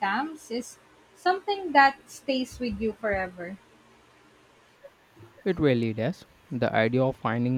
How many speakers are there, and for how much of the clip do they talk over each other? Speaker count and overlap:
two, no overlap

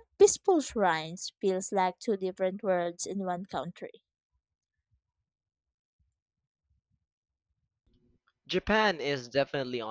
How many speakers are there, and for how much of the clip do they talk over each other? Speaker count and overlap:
two, no overlap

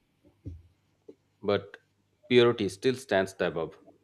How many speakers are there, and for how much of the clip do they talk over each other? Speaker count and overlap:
one, no overlap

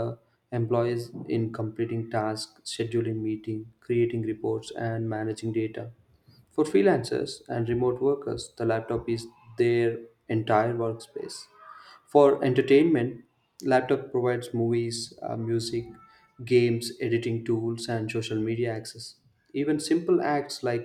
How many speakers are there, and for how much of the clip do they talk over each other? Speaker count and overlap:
one, no overlap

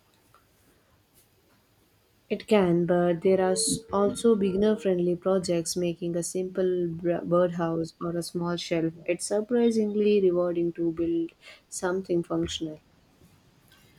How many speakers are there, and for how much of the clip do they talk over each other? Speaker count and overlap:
one, no overlap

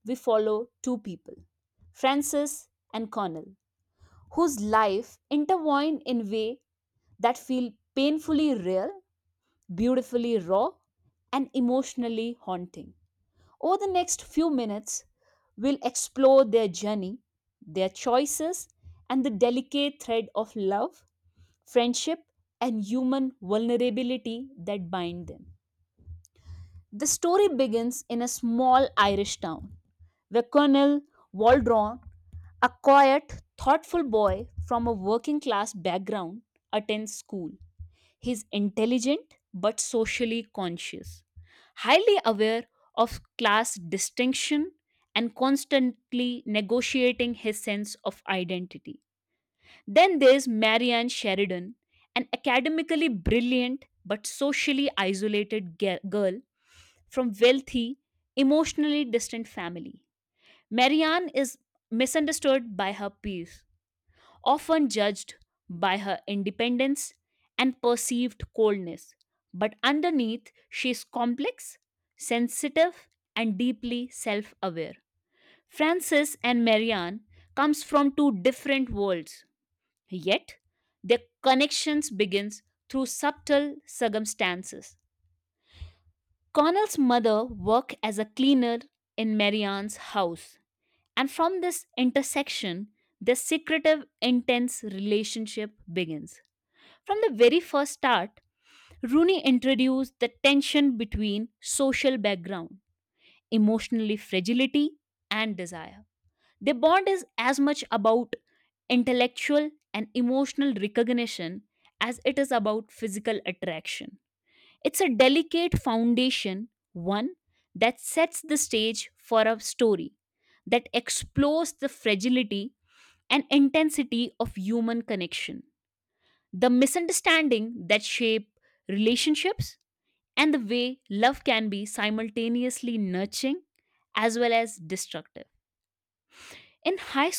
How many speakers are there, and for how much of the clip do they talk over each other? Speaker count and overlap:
one, no overlap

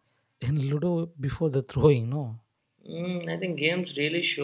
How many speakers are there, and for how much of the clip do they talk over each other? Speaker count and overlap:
two, no overlap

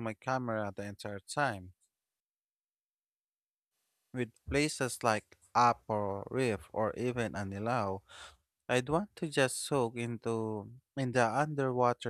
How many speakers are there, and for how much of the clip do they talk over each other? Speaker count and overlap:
one, no overlap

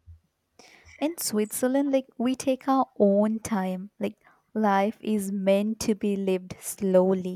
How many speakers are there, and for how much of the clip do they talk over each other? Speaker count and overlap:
one, no overlap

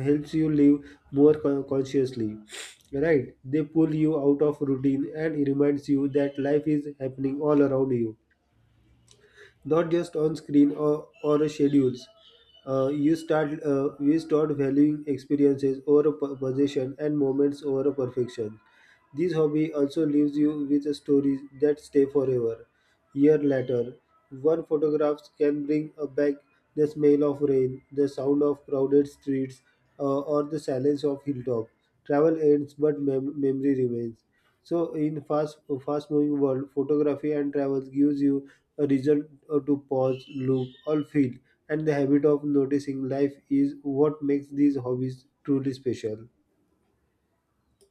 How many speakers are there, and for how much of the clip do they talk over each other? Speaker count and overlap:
one, no overlap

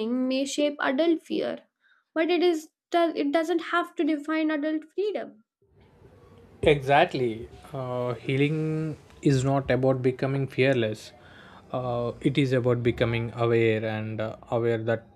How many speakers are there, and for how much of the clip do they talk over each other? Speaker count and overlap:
two, no overlap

